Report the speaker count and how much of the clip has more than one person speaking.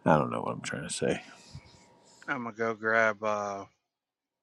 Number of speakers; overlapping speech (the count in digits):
2, no overlap